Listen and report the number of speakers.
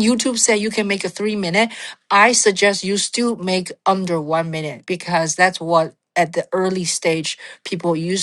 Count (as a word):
one